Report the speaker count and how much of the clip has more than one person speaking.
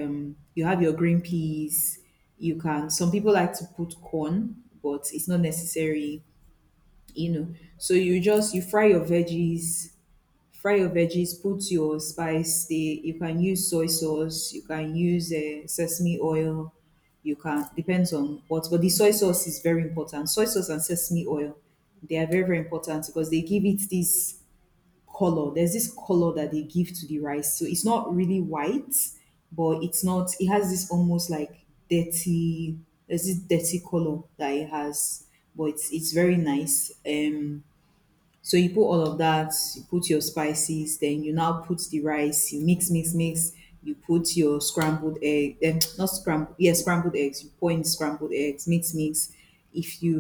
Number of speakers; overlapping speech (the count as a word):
one, no overlap